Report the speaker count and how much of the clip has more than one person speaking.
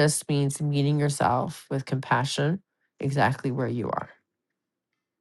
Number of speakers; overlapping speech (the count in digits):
1, no overlap